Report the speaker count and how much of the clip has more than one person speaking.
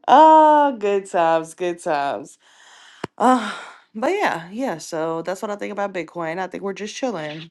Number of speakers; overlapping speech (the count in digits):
1, no overlap